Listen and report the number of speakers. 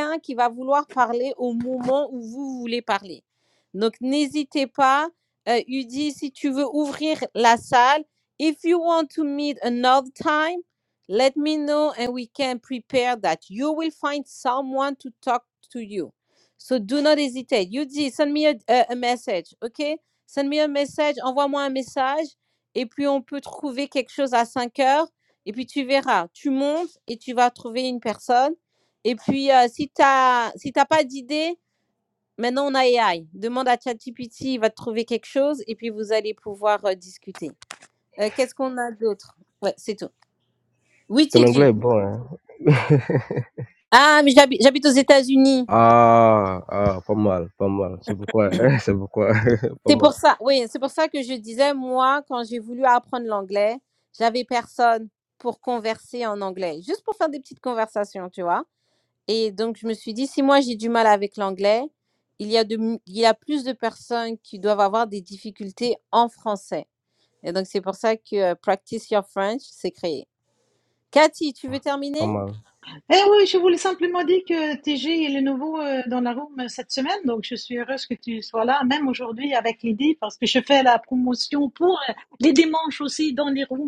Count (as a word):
three